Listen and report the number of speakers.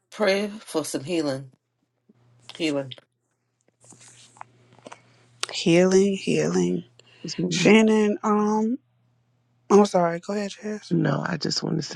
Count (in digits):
3